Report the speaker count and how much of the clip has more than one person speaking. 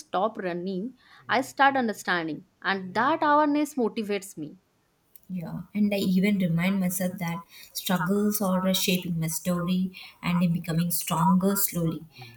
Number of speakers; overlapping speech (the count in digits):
2, no overlap